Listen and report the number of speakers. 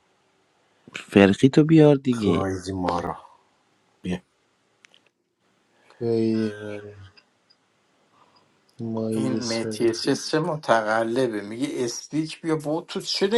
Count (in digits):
4